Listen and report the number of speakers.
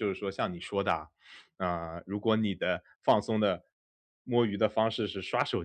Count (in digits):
1